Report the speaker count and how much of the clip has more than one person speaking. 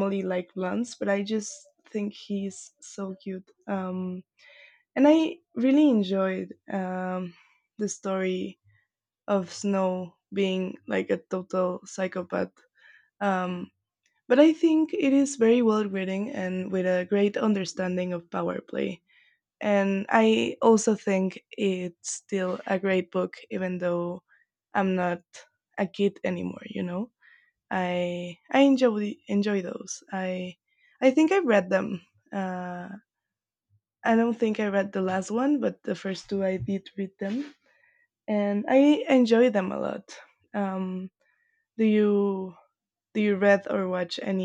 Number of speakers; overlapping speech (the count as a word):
one, no overlap